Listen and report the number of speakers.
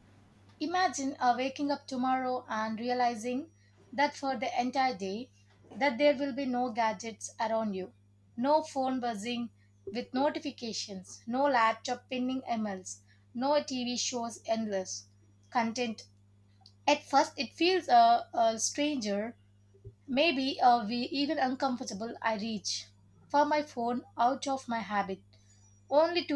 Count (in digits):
1